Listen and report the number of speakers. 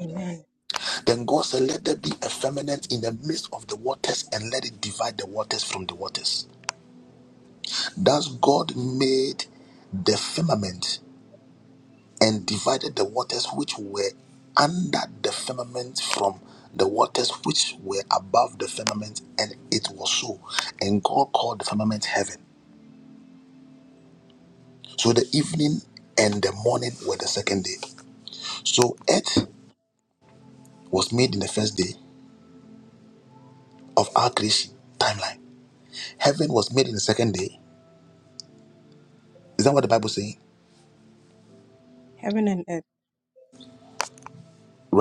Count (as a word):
two